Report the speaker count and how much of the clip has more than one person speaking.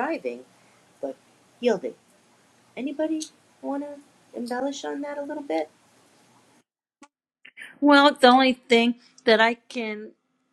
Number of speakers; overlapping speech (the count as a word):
two, no overlap